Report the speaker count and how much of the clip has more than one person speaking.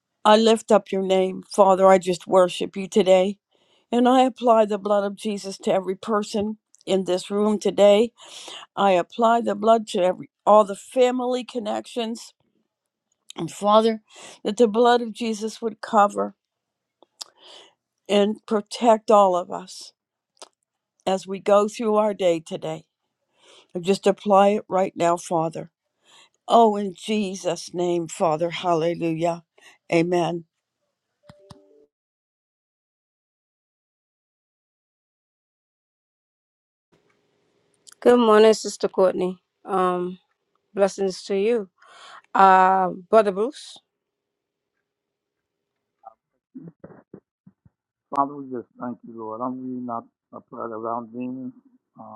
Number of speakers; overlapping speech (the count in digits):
3, no overlap